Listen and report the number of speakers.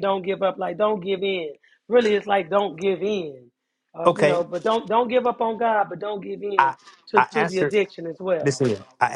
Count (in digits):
2